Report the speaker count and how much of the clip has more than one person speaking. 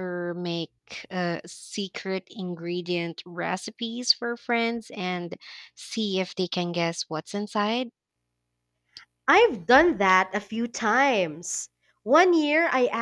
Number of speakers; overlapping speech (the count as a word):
two, no overlap